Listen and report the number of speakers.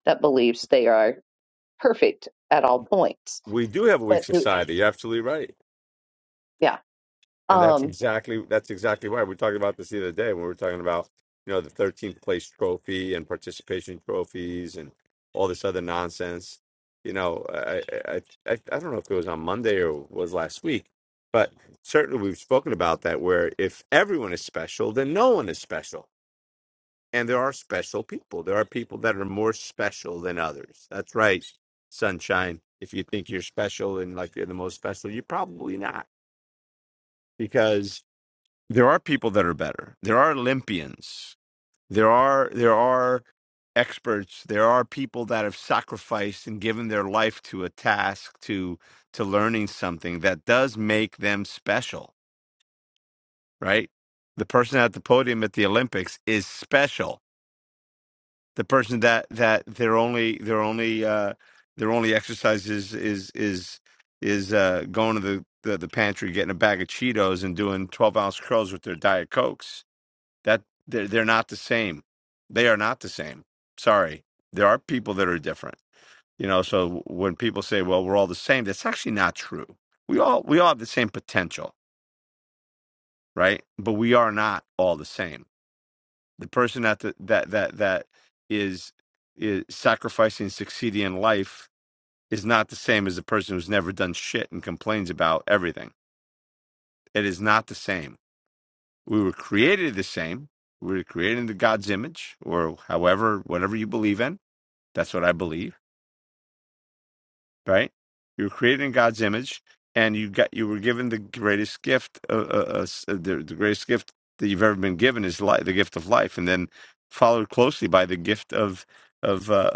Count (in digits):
2